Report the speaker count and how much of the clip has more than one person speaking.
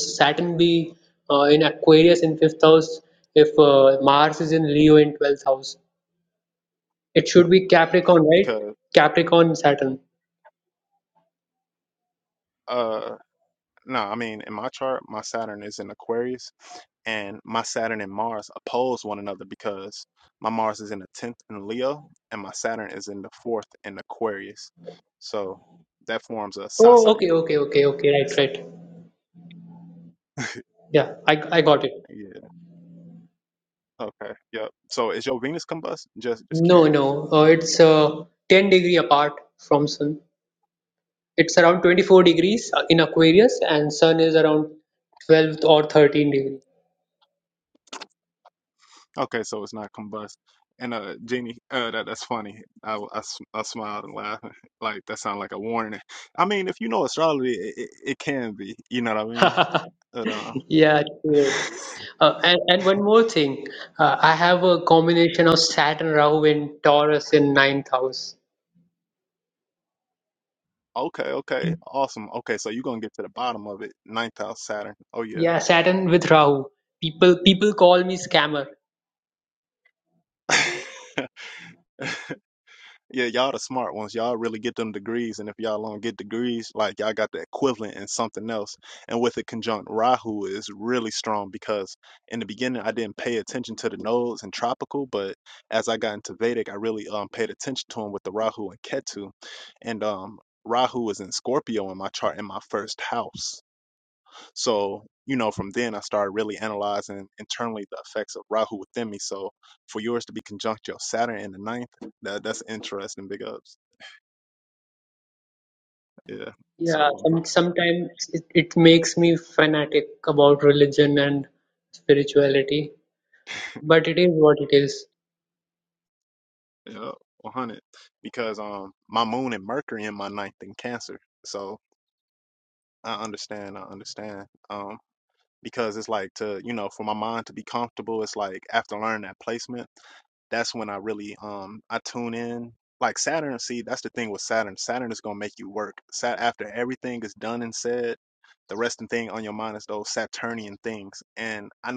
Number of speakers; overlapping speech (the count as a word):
two, about 1%